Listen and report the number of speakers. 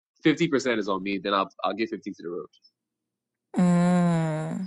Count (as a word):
two